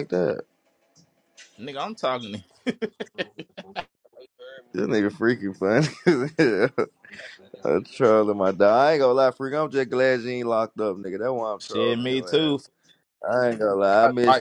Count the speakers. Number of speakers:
two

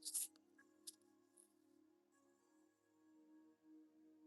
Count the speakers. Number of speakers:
zero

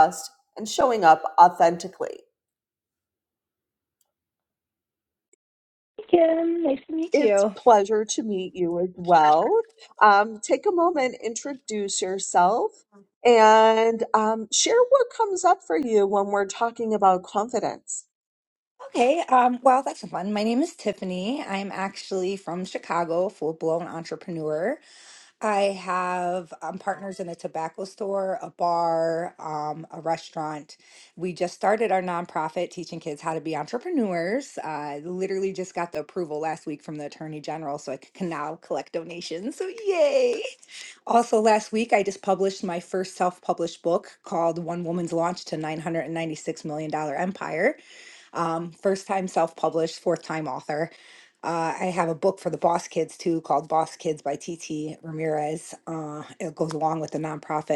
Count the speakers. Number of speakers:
two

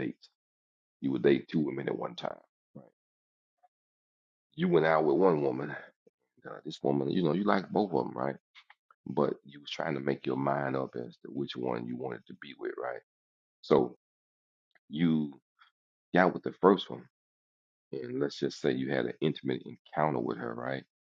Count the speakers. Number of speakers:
one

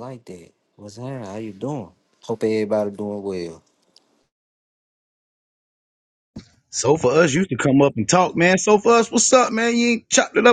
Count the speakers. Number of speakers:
two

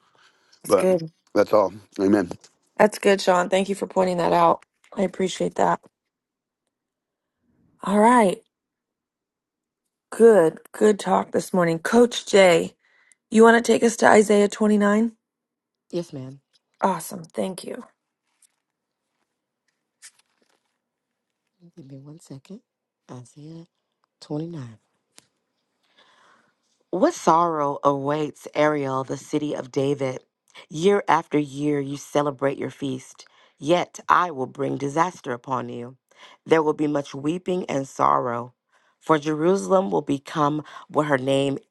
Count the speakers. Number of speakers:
three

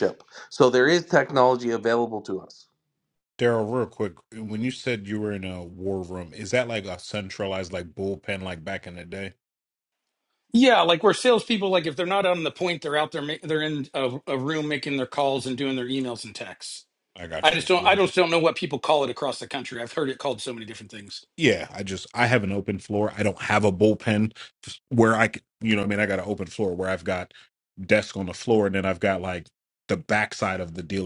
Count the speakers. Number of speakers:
three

